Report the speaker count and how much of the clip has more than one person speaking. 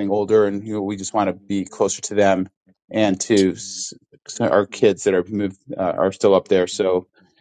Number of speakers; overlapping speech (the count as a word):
one, no overlap